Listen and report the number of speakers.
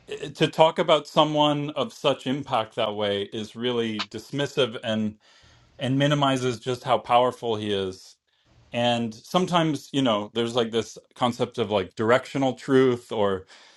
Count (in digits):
1